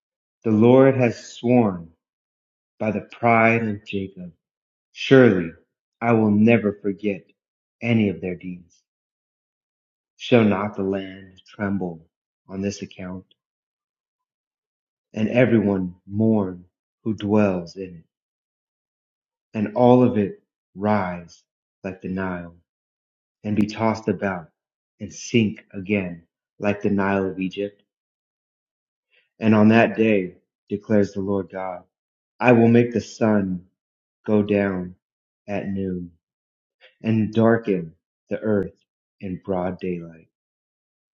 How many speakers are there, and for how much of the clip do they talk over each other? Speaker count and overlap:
one, no overlap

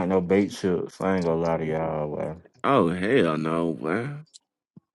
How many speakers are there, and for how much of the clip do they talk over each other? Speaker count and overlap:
two, no overlap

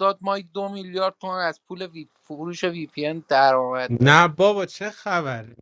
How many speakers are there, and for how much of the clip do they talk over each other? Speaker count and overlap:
two, about 5%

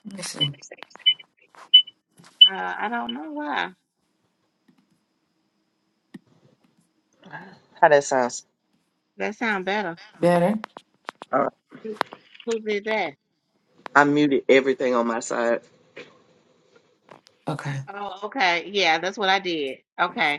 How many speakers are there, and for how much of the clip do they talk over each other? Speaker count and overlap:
three, no overlap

